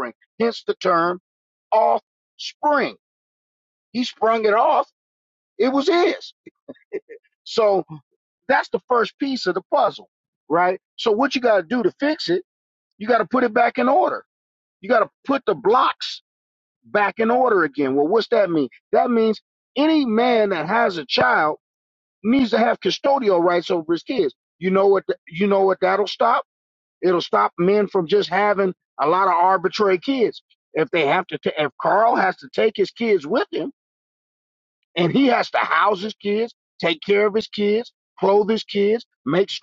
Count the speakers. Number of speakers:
one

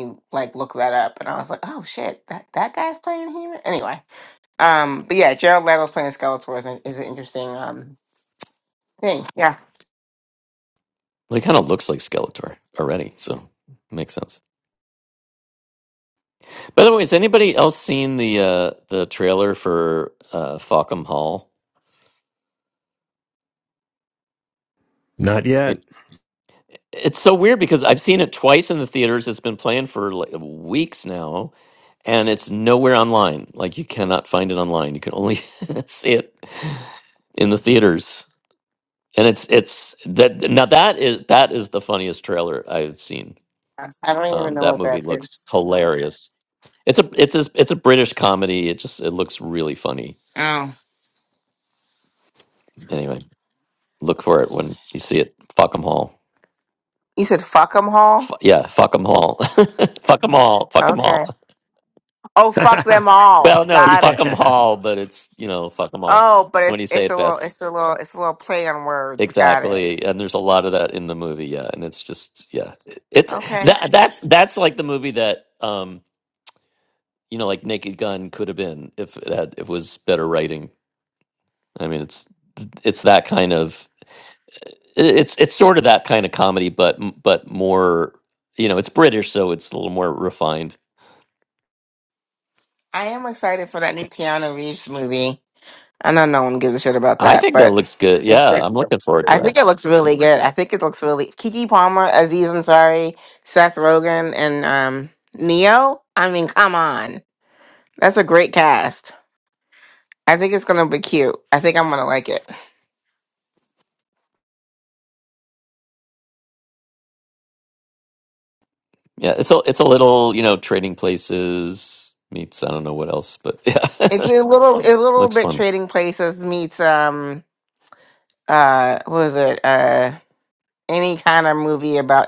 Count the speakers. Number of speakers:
three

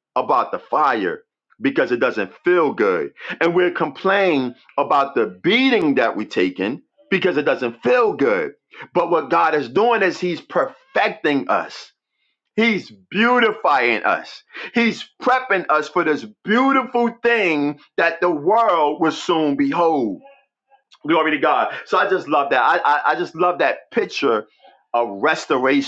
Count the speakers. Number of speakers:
one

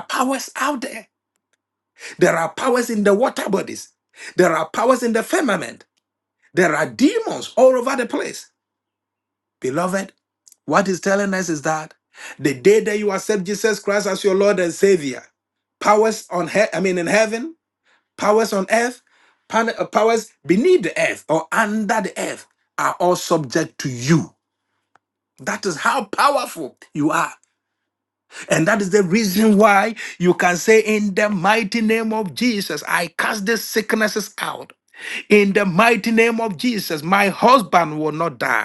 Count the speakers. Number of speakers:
one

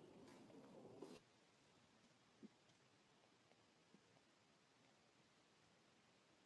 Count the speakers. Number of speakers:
zero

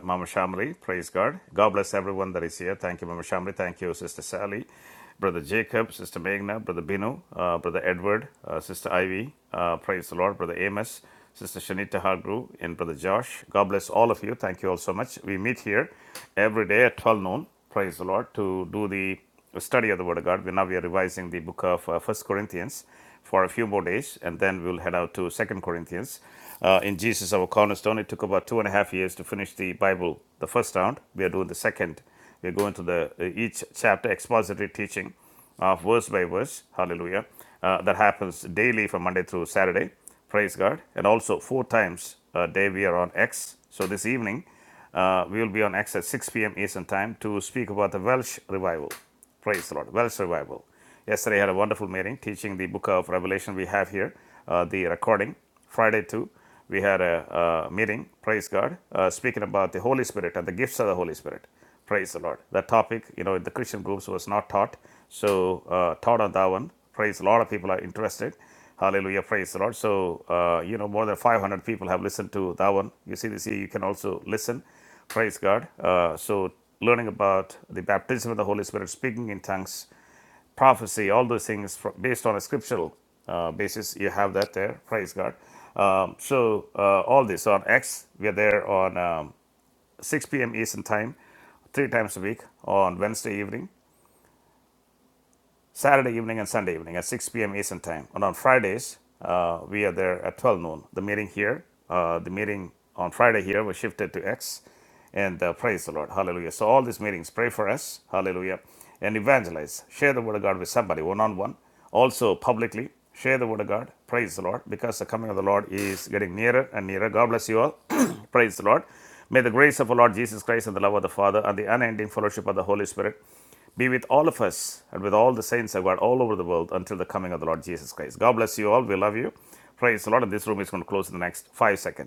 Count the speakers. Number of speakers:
one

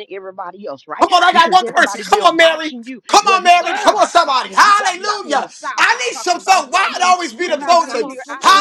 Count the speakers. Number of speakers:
two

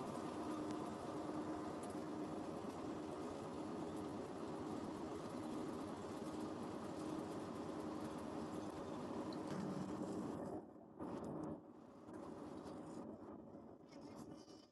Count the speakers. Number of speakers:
zero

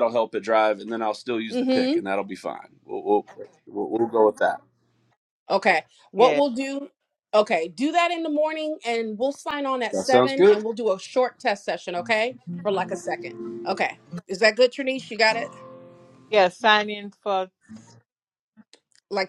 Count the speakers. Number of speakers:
three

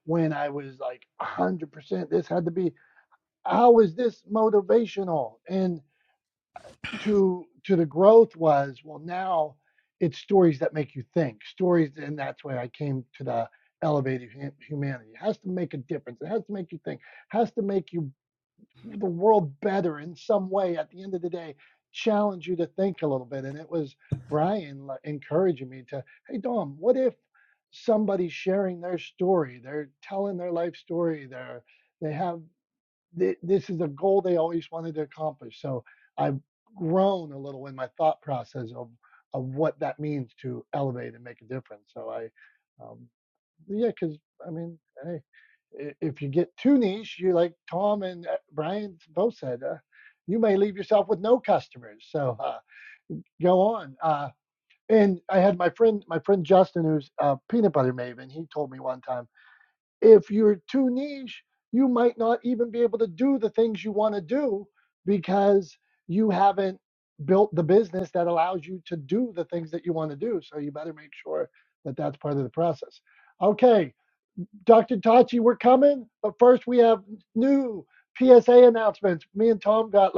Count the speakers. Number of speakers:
one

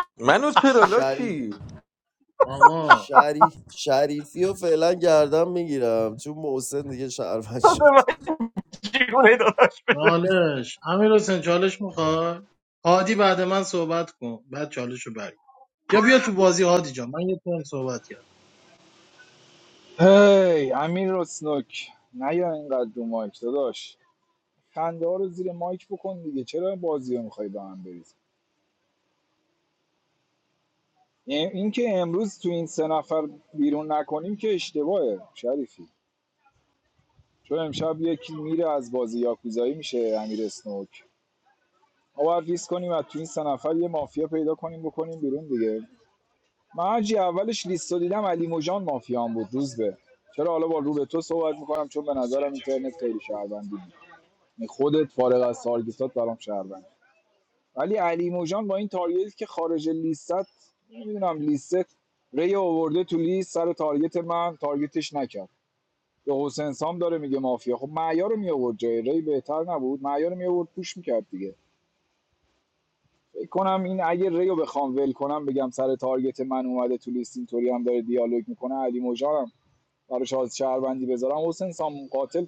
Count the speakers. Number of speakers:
five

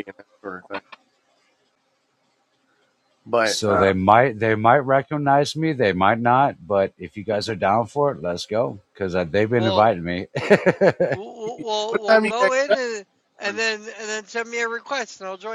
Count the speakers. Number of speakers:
three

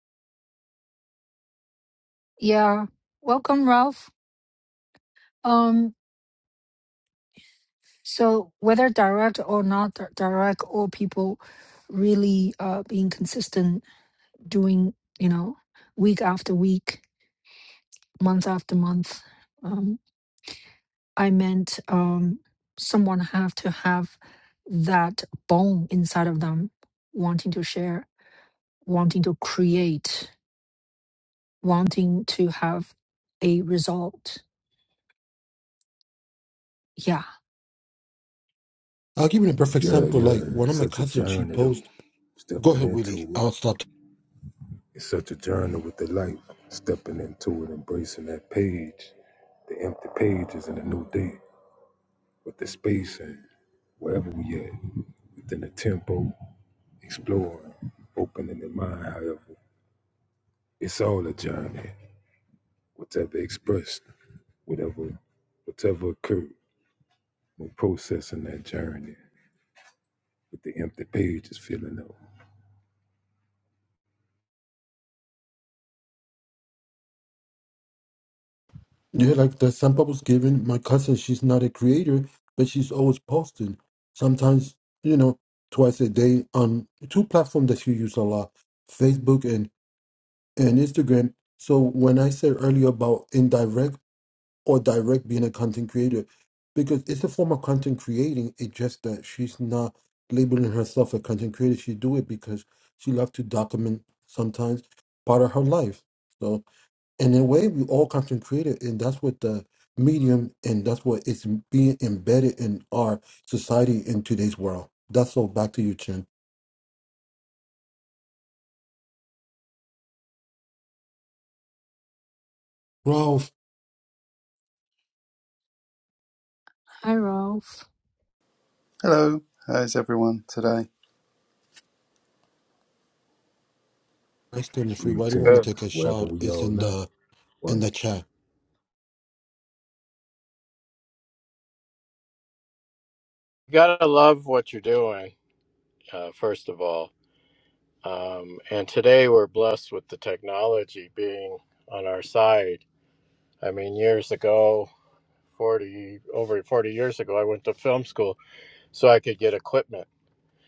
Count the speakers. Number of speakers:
five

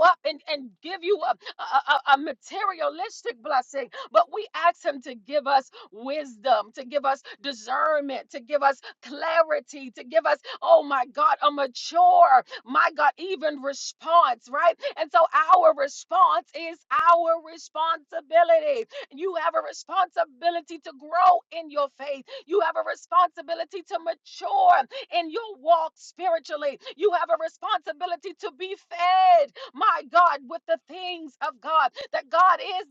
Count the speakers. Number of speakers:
one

